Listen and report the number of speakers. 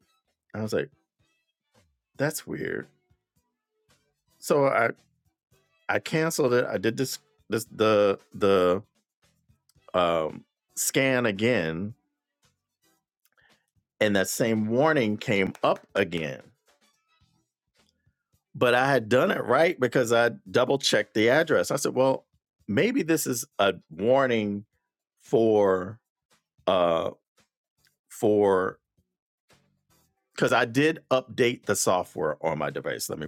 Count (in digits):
1